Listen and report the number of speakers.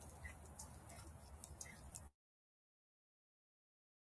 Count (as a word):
zero